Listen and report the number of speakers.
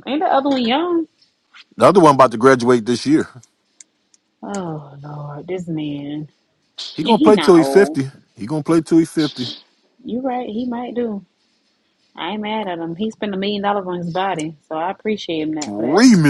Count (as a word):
two